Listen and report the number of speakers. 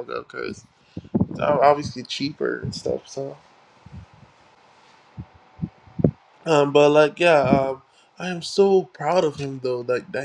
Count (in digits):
1